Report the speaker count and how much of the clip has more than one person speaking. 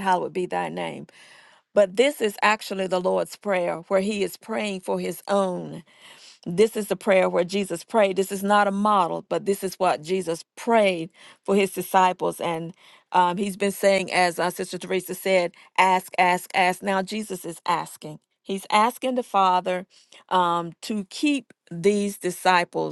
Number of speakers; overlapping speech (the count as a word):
one, no overlap